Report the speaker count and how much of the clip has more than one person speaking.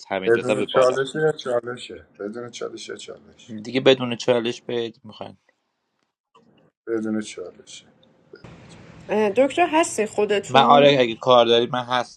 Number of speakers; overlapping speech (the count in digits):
3, about 11%